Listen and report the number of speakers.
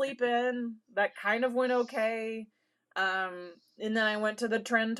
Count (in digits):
1